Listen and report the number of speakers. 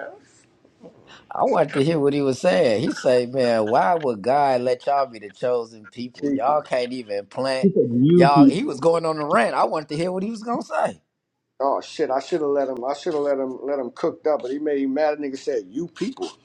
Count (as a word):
three